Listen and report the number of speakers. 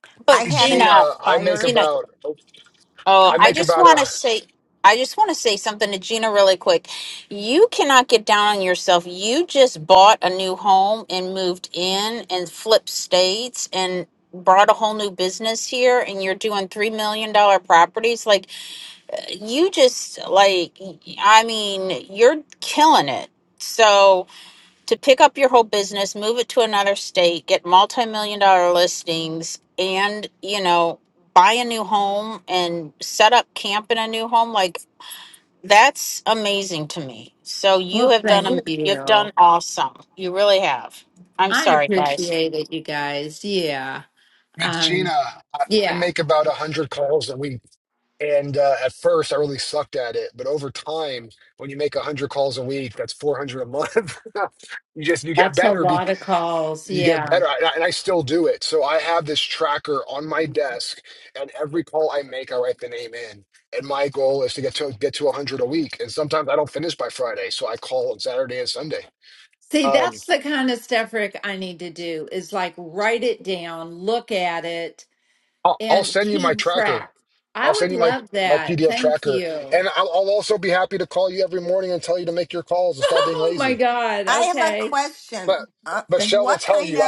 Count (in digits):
4